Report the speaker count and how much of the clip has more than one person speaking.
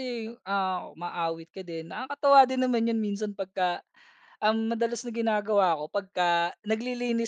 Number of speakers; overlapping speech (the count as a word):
one, no overlap